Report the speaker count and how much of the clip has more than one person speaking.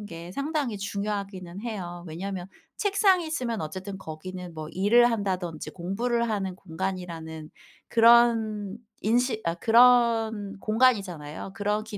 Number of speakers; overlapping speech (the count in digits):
1, no overlap